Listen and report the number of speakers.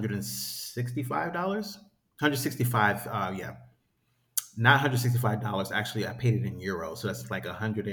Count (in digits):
1